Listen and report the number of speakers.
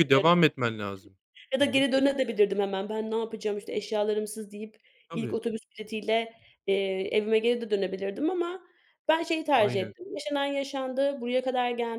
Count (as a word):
two